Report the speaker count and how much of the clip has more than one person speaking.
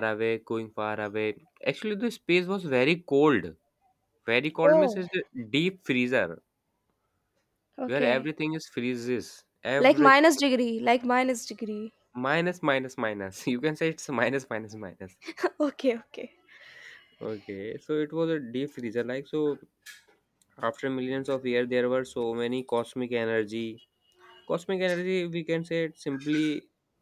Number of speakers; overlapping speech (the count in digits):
2, about 4%